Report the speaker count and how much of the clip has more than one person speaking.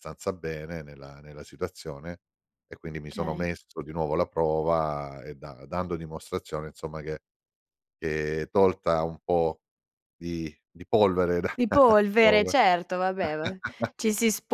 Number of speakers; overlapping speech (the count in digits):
2, about 2%